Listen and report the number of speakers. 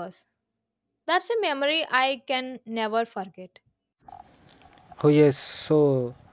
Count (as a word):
two